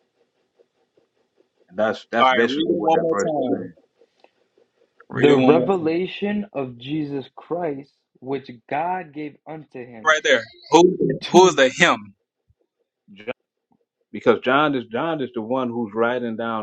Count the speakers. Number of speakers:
3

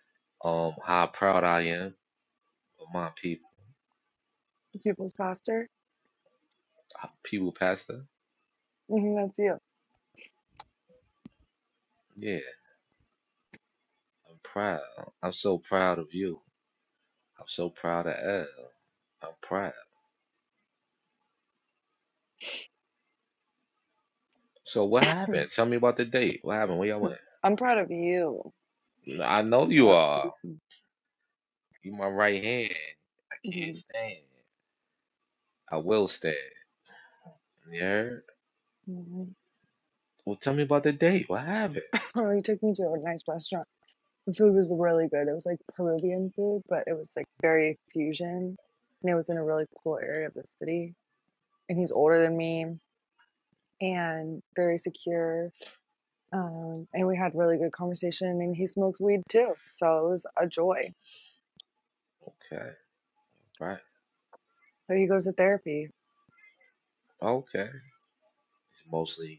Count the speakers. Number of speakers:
2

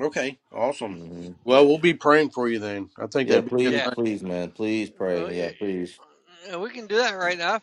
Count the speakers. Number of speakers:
3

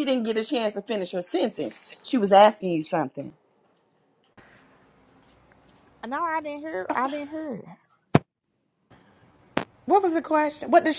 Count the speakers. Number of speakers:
3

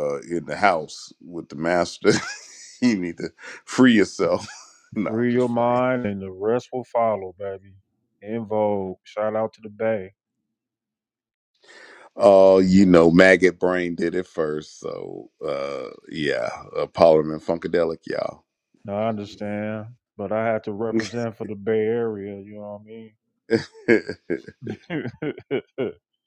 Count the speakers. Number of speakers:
2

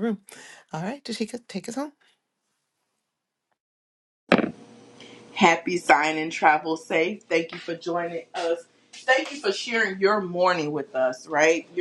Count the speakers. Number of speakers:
2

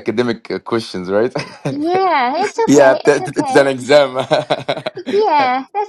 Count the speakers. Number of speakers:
2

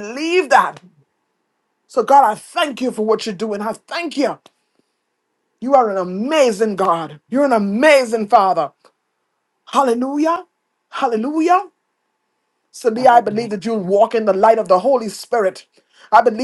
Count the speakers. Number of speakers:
1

